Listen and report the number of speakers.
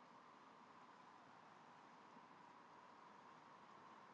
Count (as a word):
zero